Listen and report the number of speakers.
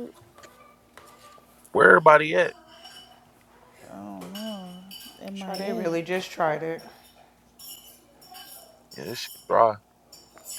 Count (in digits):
3